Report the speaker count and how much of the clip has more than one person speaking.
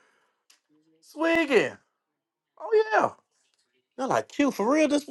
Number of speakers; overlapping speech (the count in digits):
1, no overlap